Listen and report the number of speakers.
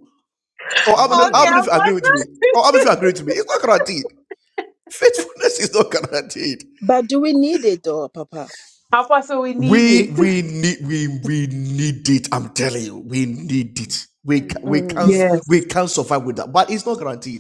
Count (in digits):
3